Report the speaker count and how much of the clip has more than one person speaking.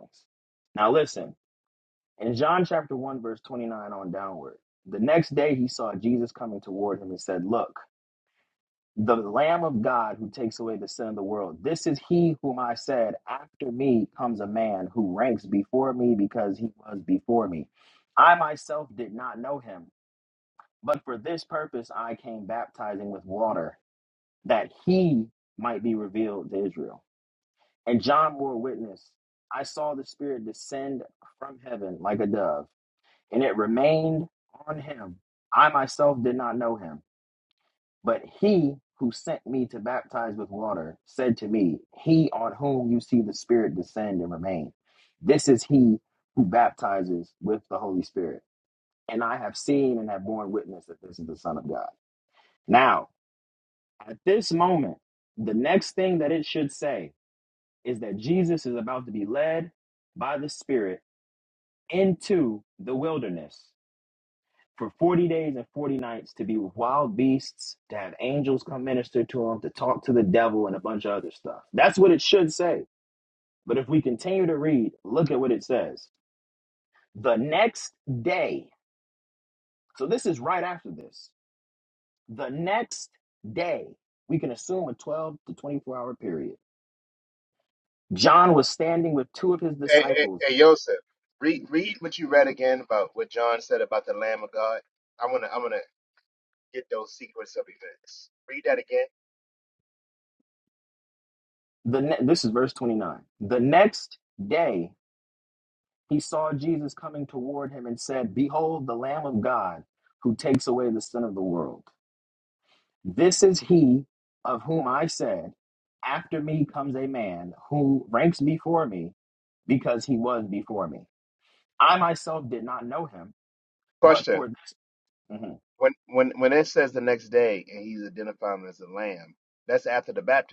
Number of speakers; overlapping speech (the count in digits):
2, about 1%